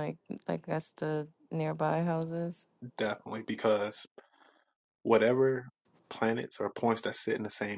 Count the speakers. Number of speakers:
2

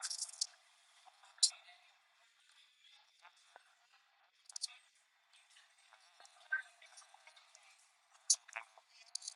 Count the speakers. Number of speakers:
0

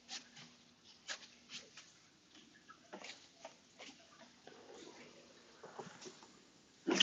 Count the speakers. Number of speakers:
0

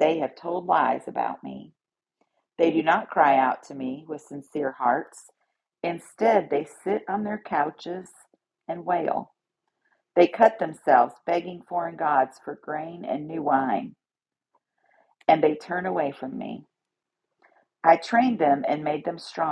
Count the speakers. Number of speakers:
1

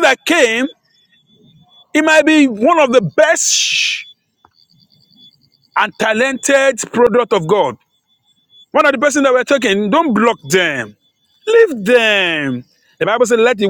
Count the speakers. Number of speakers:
1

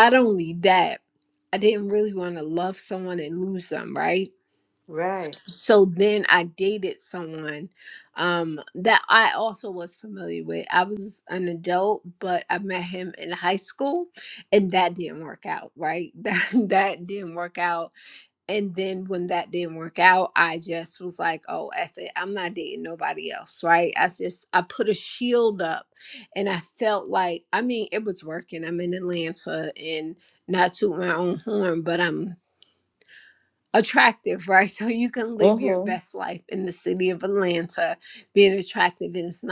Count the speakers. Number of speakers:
2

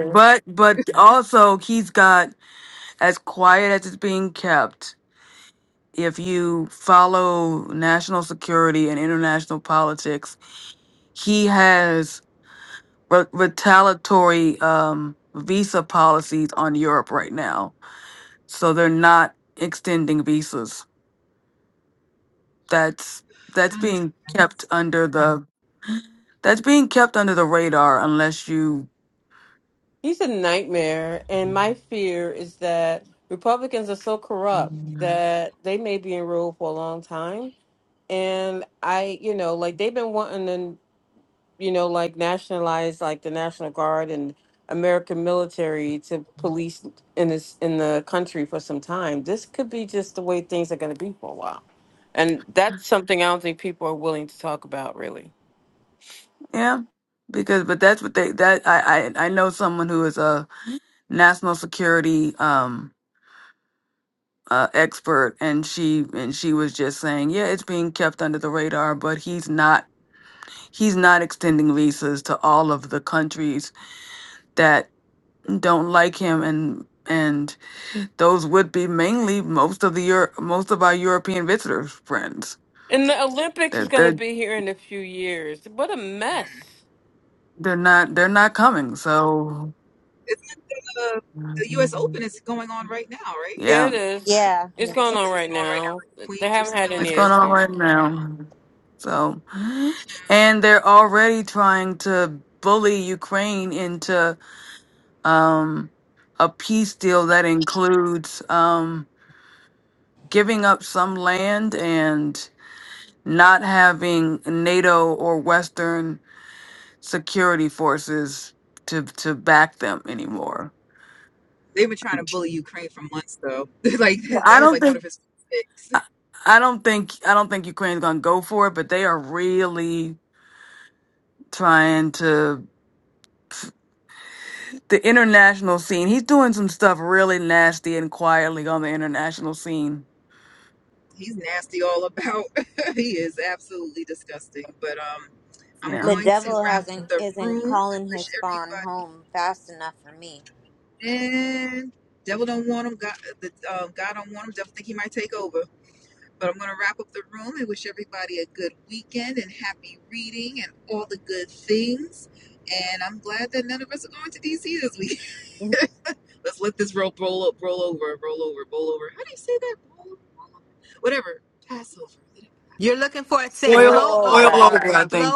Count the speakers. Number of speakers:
5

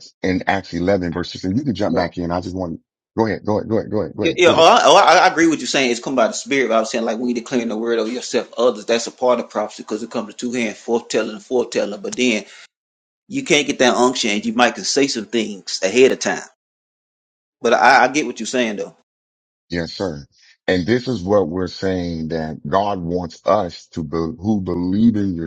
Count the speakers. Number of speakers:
2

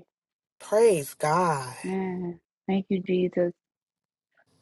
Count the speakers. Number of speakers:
2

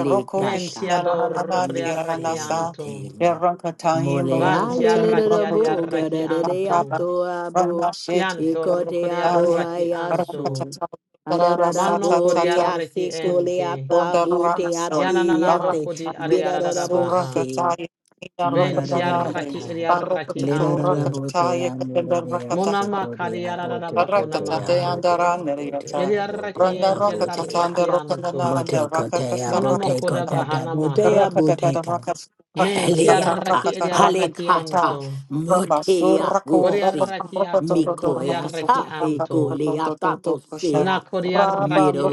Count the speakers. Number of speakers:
3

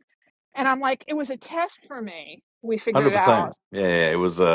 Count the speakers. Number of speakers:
2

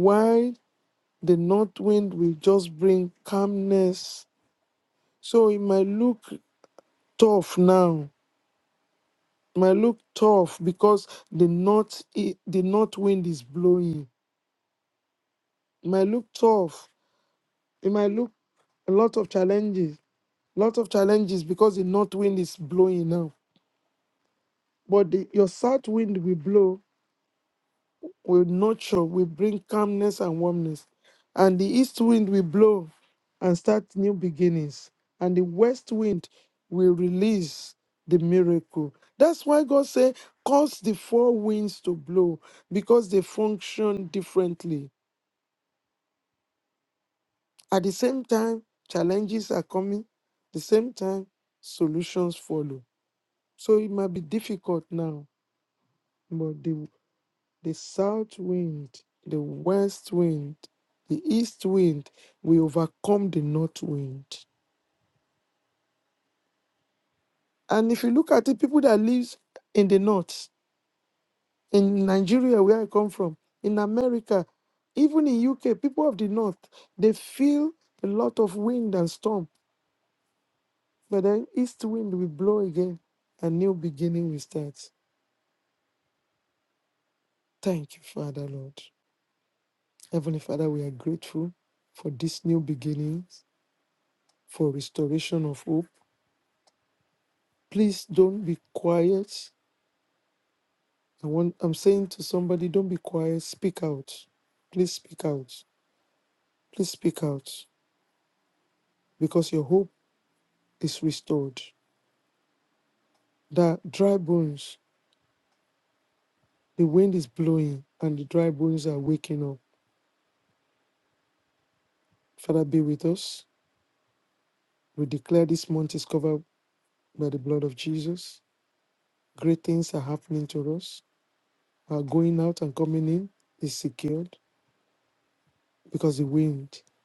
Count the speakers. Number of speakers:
1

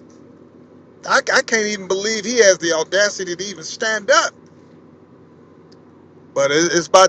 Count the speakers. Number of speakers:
1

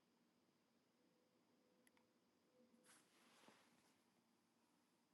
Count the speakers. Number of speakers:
0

